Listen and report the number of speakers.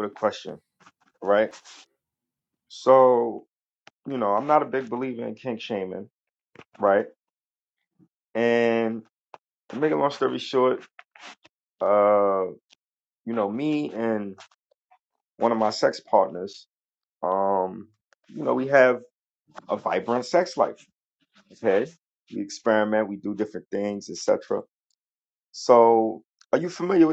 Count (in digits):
1